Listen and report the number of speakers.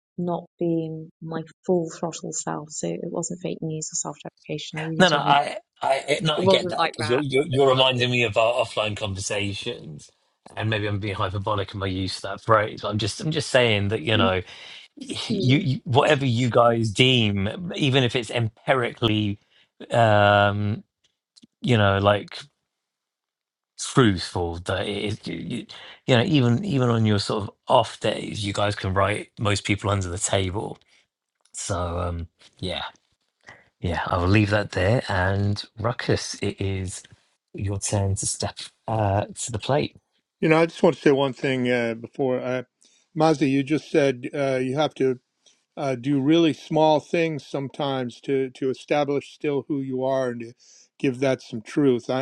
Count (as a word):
three